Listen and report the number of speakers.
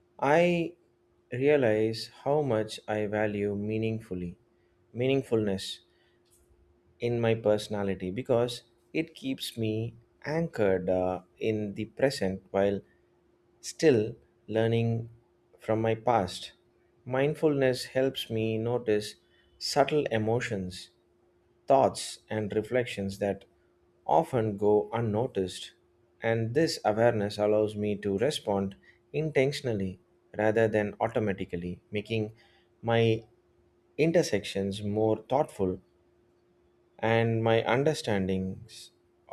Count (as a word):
one